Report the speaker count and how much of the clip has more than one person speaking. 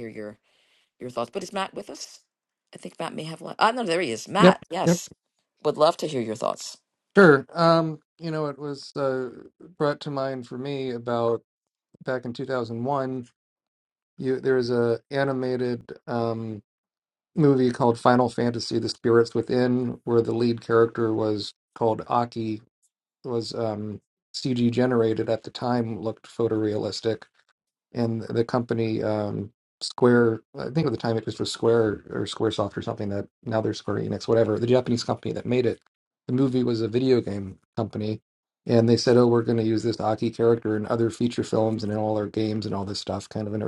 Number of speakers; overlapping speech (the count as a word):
two, about 1%